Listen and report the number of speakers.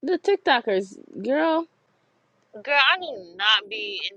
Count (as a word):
two